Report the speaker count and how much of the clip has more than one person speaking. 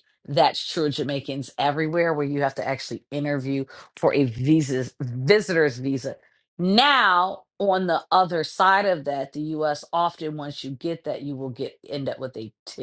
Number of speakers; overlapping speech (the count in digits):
1, no overlap